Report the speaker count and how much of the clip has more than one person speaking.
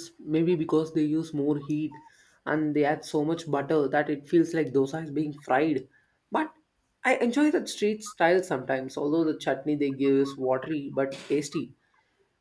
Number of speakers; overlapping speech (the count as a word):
one, no overlap